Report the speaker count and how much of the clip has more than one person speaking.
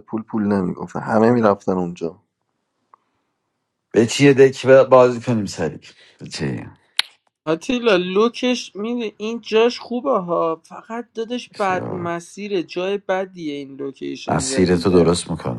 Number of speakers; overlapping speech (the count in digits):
3, about 8%